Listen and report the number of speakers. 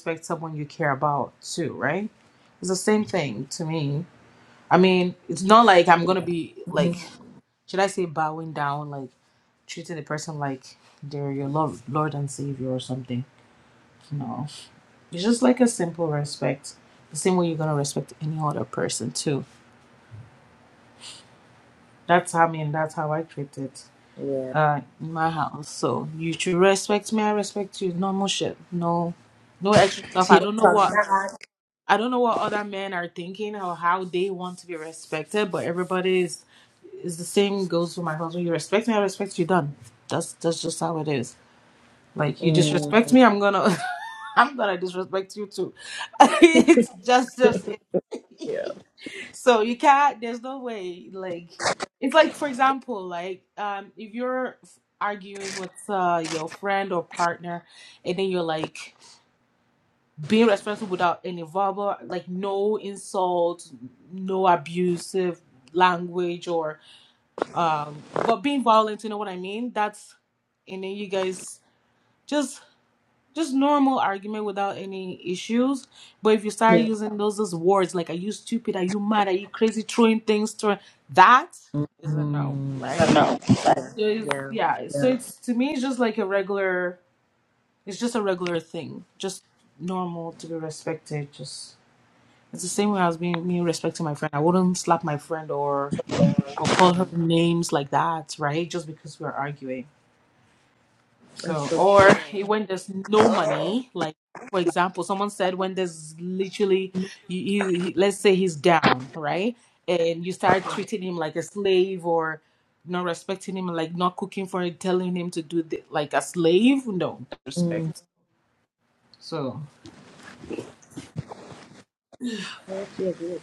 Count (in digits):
2